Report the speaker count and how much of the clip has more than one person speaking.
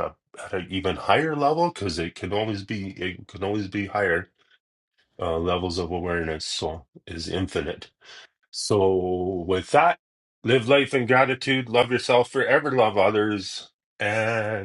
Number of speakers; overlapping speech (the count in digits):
1, no overlap